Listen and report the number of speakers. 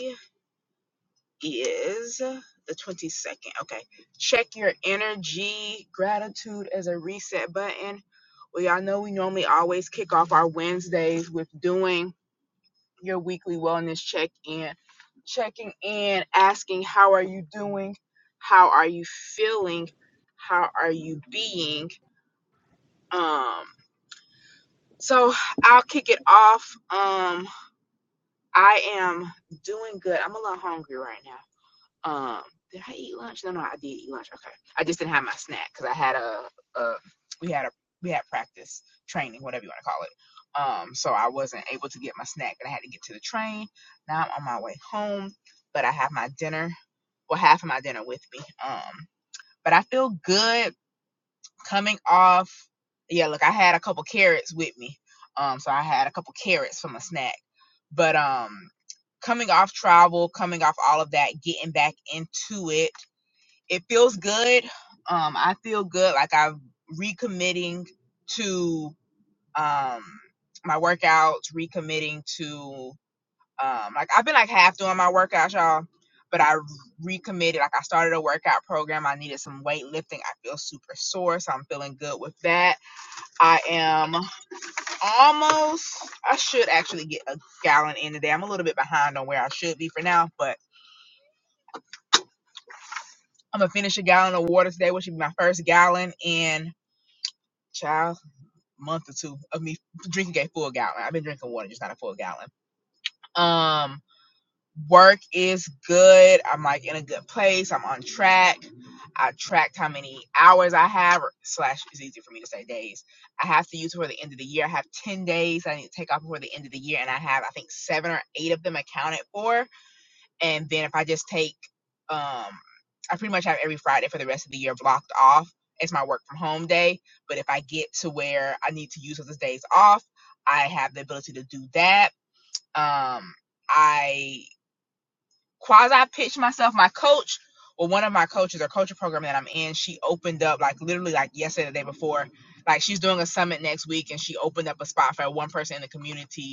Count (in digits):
1